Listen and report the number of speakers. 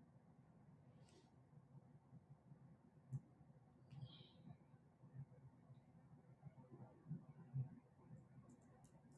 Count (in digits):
0